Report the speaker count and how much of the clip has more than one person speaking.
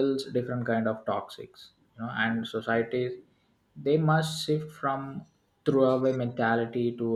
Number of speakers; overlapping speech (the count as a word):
one, no overlap